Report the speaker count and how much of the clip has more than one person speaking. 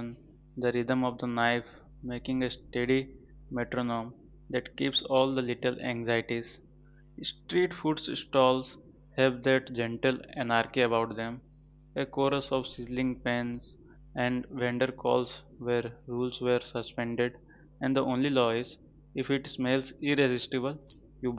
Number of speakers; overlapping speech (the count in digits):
1, no overlap